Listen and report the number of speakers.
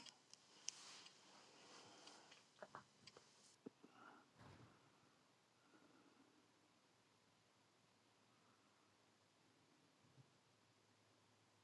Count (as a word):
zero